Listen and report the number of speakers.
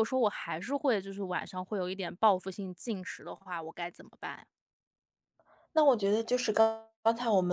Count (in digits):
2